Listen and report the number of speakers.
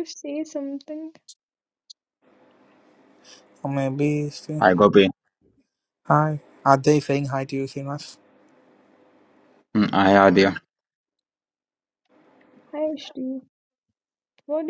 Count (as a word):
three